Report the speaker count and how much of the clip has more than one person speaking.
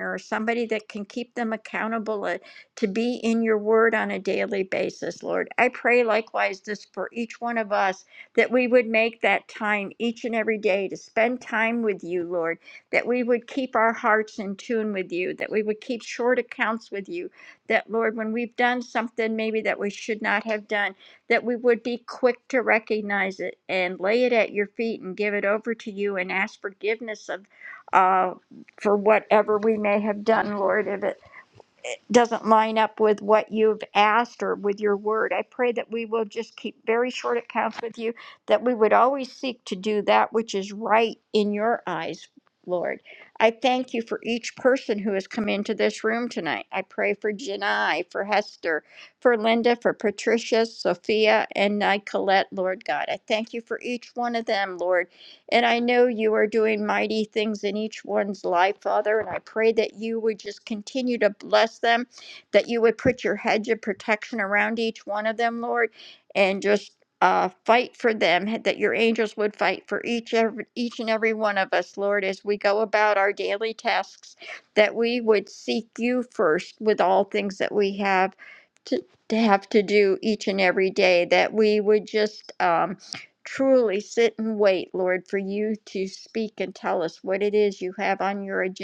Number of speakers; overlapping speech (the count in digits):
1, no overlap